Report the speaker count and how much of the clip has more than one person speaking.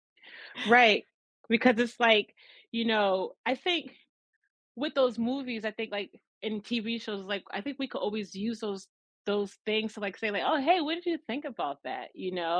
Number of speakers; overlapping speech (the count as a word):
one, no overlap